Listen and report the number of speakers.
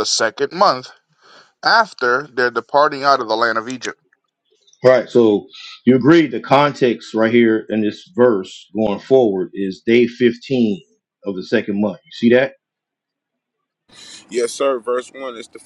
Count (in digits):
3